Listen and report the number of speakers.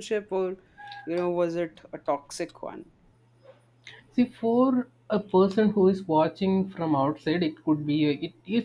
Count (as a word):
two